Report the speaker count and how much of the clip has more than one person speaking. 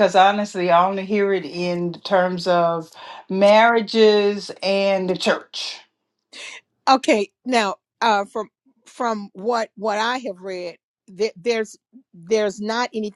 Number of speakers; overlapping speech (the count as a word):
two, no overlap